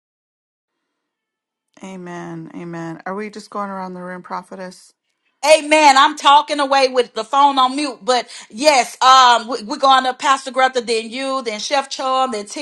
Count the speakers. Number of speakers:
2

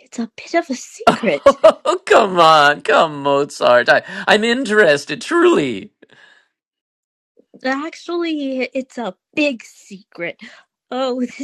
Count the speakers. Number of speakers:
2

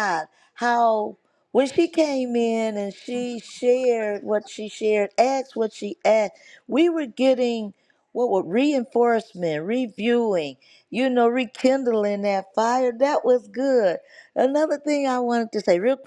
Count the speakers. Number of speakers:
1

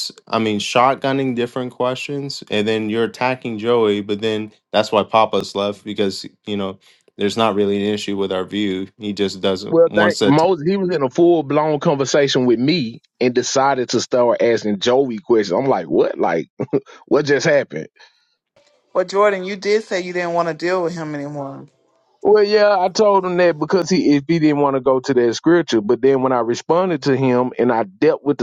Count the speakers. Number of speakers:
3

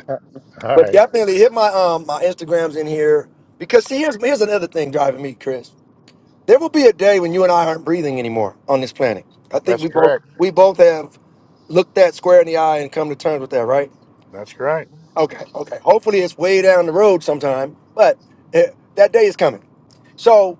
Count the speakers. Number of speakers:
2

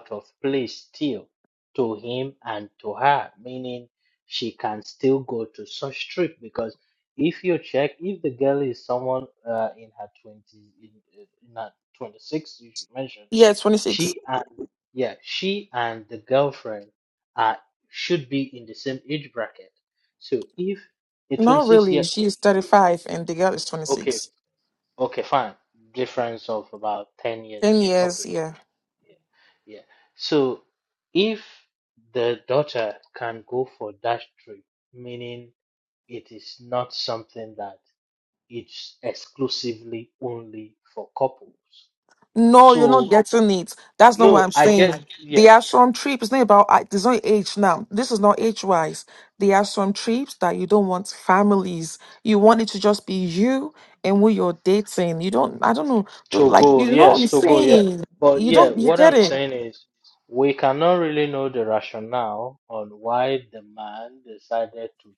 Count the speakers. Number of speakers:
2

